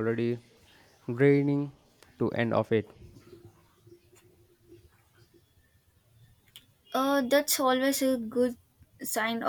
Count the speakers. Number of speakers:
two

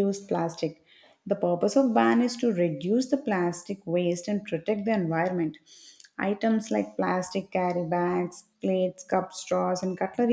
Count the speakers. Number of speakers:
one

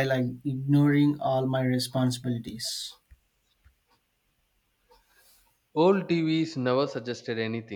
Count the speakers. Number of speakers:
two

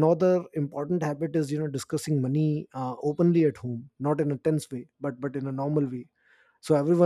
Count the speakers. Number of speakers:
one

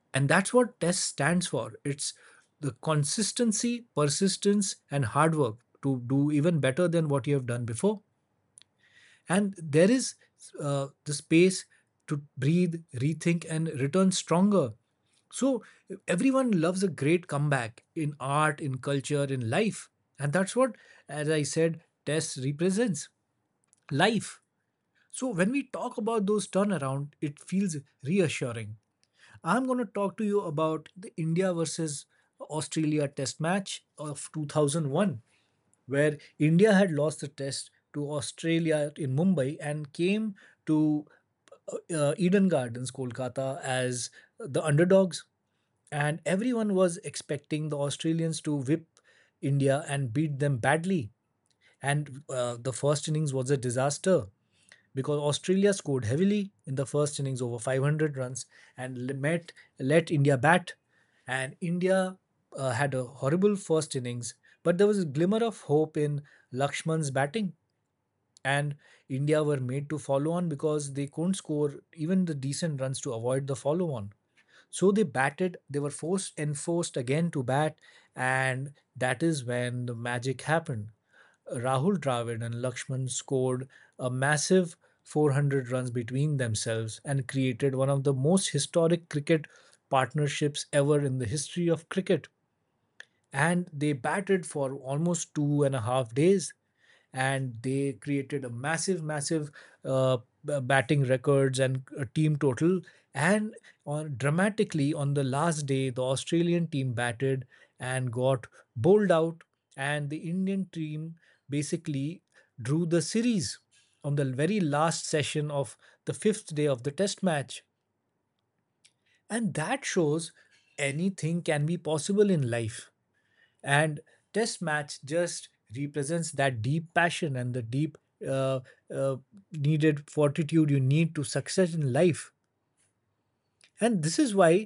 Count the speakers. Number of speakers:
one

